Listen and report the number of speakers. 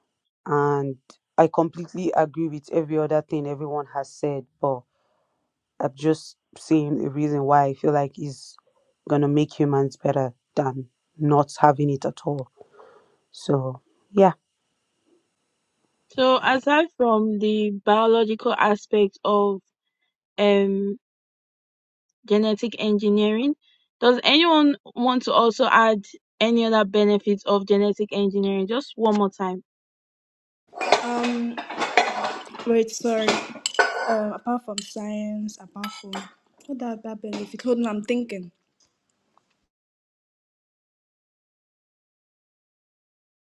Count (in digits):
3